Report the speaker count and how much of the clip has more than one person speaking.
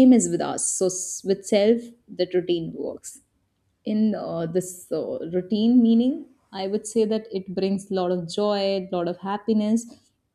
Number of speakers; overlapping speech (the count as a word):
one, no overlap